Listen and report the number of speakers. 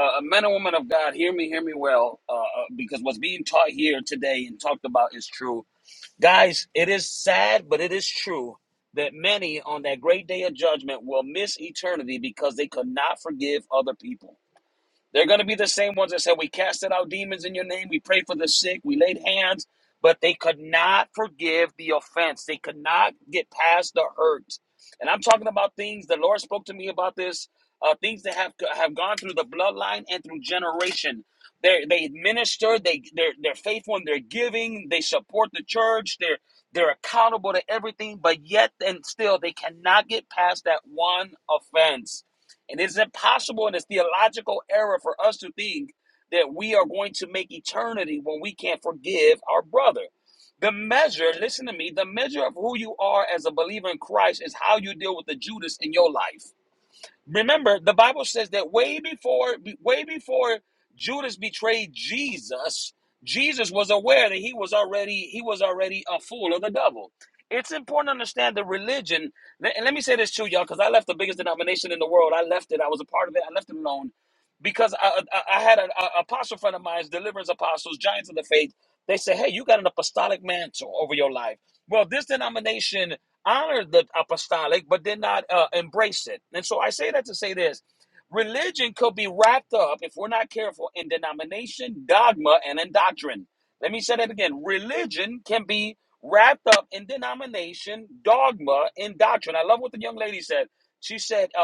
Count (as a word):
one